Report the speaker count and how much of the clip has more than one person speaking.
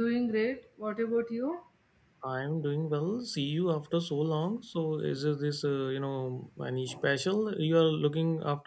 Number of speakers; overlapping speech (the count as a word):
two, no overlap